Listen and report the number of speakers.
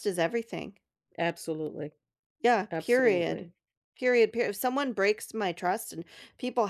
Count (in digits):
2